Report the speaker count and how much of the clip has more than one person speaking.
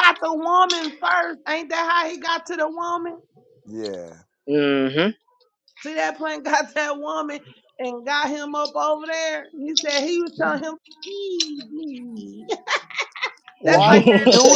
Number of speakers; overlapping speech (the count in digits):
3, about 6%